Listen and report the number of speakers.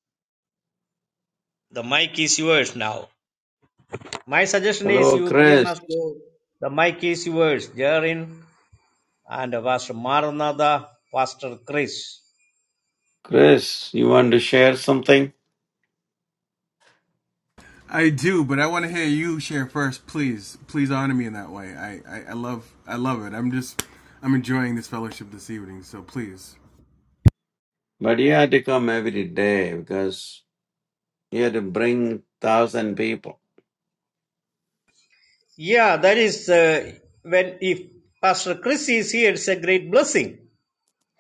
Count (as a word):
three